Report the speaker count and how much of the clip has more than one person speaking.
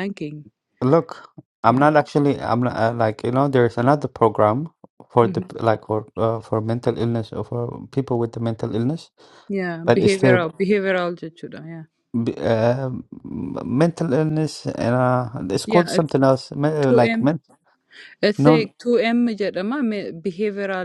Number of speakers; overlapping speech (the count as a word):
two, about 10%